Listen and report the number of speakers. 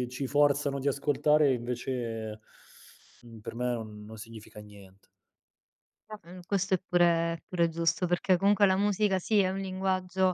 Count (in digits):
2